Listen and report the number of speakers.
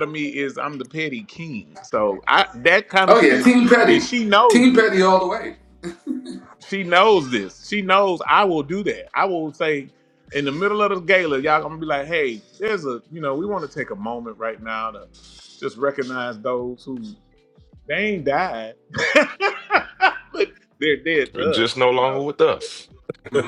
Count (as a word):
three